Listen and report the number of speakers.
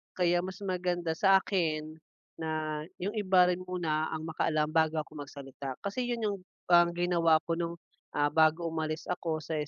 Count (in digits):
1